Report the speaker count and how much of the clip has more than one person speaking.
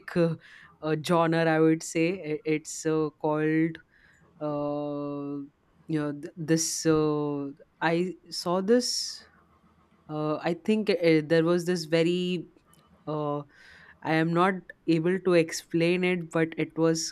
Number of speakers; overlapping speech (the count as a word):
one, no overlap